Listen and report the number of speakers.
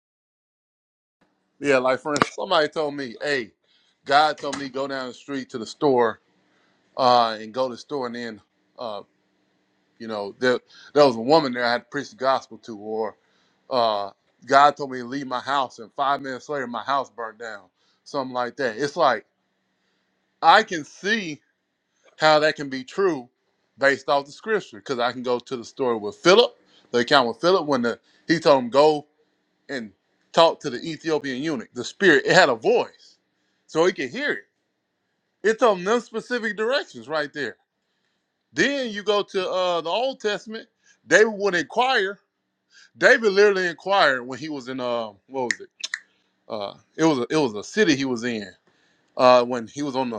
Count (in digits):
1